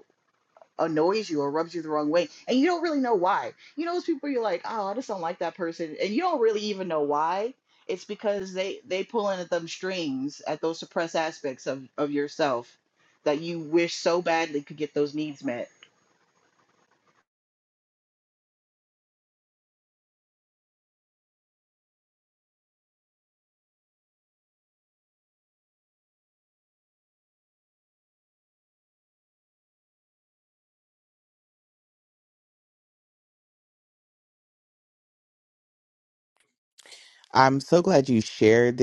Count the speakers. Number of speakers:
2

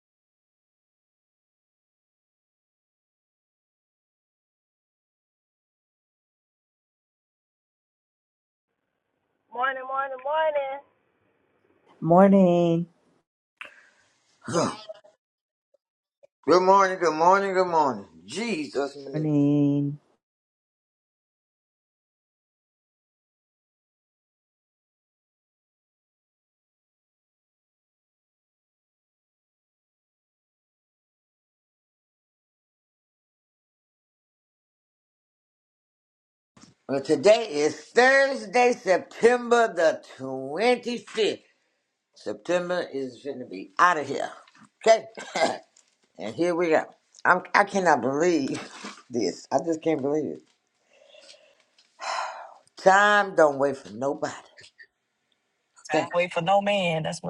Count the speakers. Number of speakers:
4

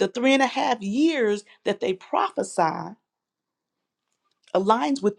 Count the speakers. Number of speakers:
1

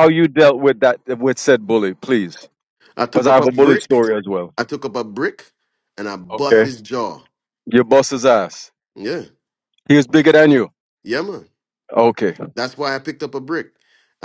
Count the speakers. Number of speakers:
2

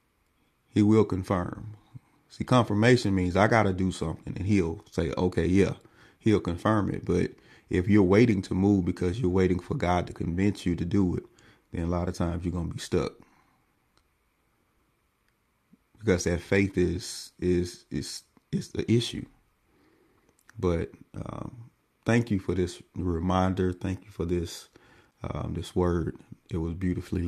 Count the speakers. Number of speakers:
1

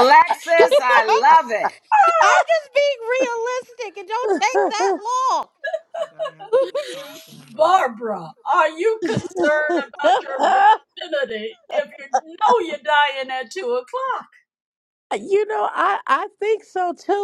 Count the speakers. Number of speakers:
4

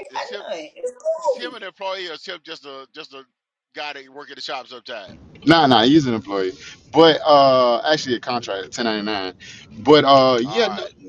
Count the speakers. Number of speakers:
3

